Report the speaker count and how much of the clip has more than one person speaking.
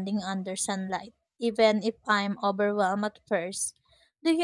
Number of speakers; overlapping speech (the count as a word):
one, no overlap